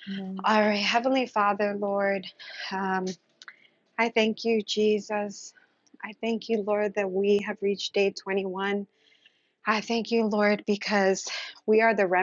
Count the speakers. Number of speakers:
1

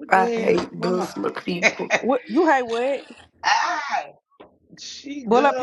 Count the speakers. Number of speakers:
3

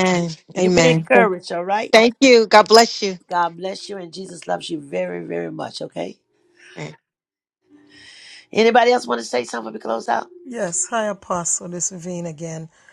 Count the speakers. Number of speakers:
3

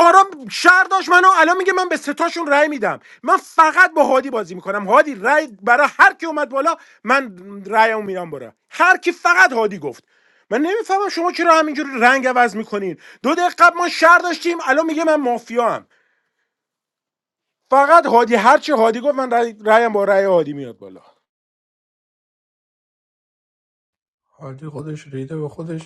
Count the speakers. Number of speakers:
2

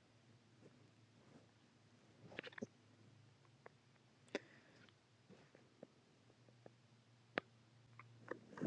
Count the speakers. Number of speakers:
0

